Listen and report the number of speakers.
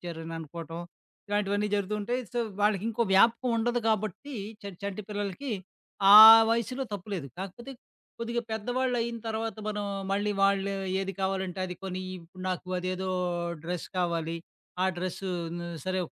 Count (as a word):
one